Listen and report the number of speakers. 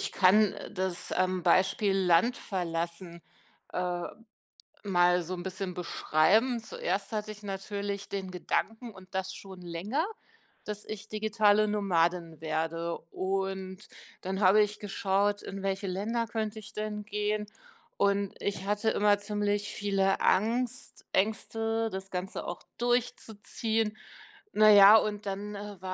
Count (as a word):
one